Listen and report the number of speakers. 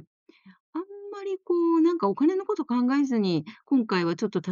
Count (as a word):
one